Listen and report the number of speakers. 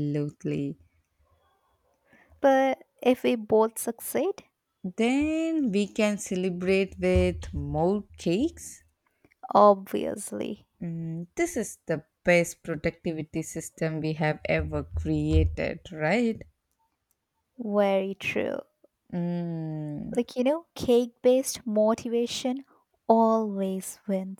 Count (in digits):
2